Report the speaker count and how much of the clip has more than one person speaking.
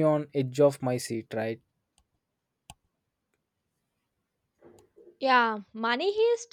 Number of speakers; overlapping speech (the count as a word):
two, no overlap